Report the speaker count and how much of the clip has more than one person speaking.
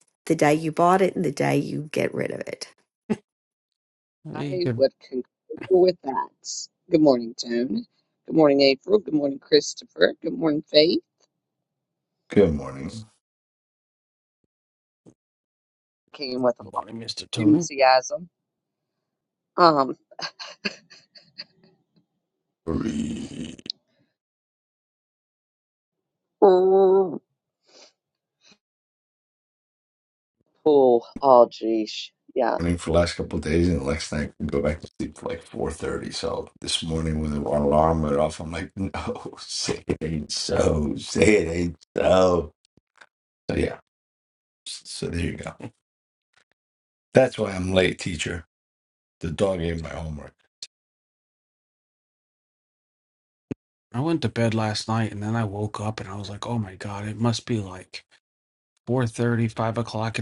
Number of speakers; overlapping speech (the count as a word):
four, about 1%